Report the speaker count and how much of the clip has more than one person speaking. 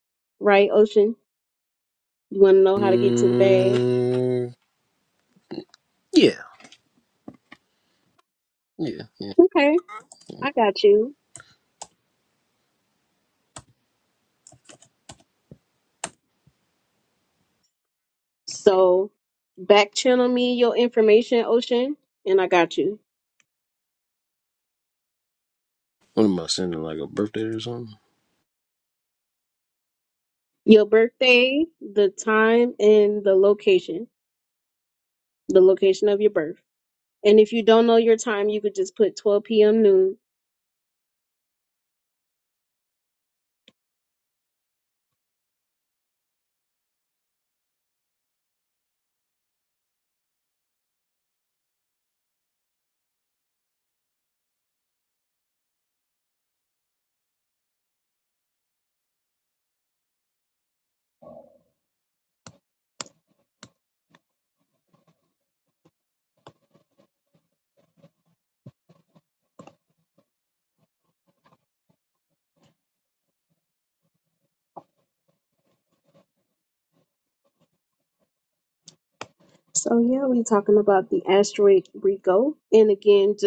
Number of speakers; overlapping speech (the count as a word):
two, about 1%